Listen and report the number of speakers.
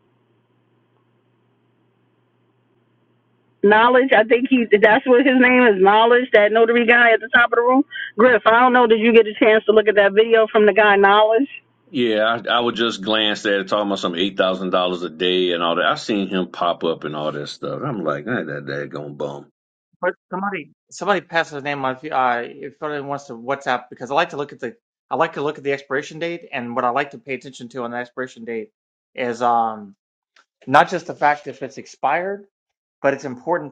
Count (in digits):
3